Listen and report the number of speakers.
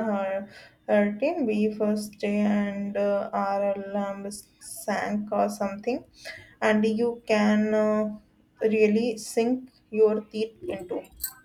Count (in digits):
1